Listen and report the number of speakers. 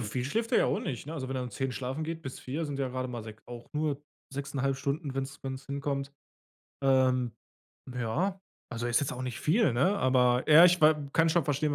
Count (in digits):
1